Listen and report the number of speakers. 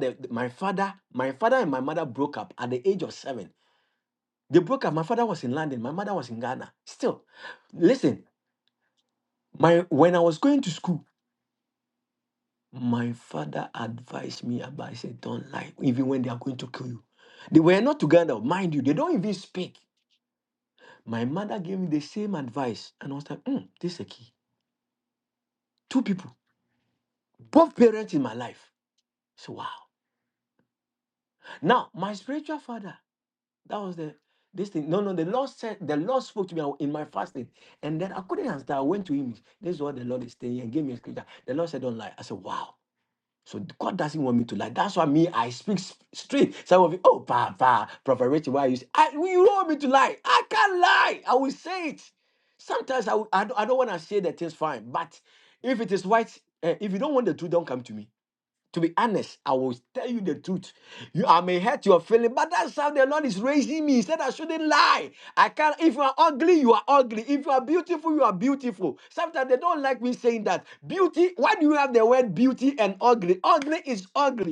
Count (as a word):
one